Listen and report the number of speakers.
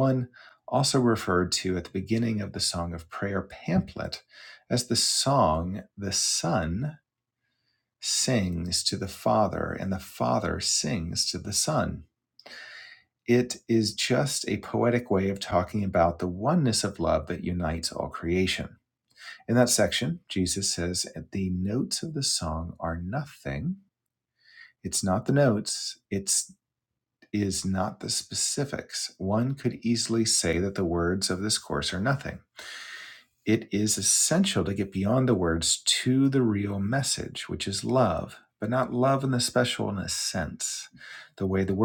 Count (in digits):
1